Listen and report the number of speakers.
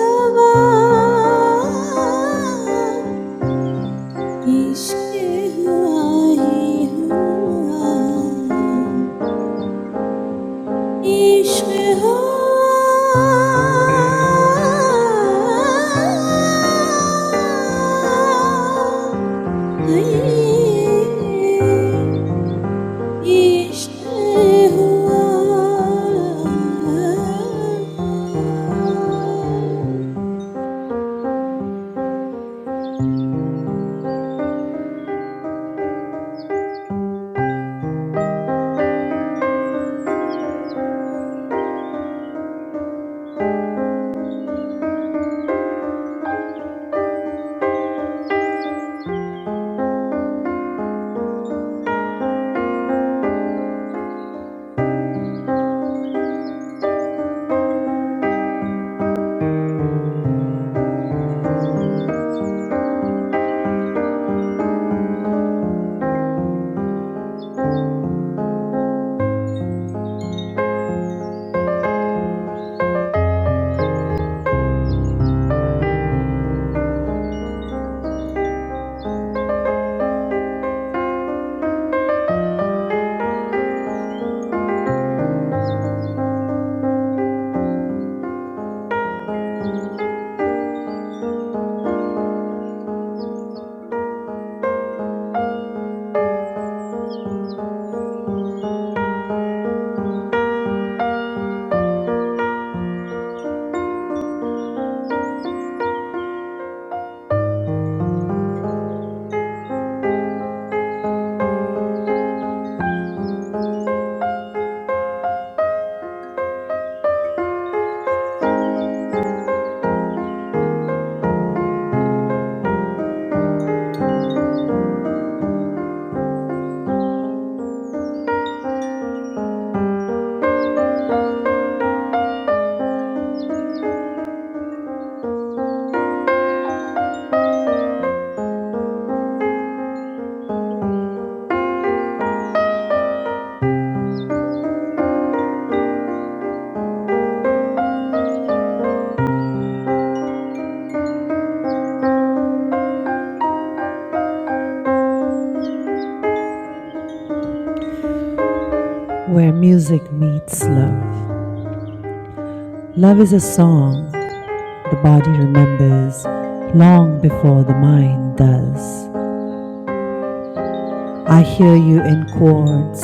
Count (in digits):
2